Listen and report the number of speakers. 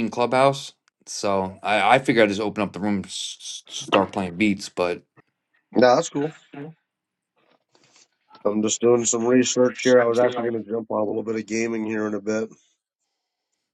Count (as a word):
two